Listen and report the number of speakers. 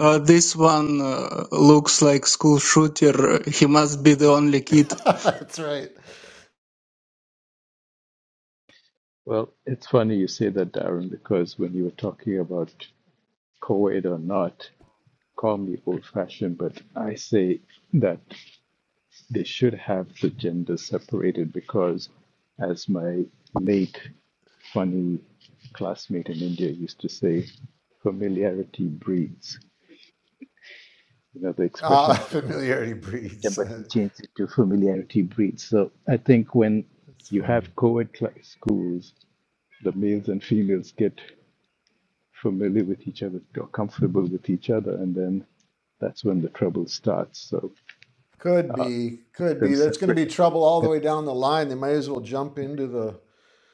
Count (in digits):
3